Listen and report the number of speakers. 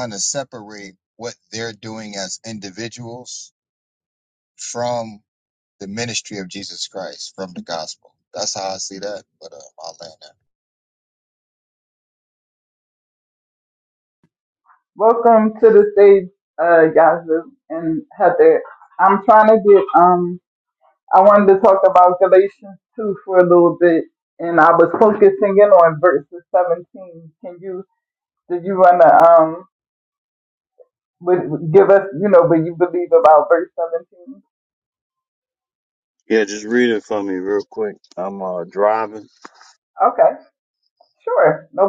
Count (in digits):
3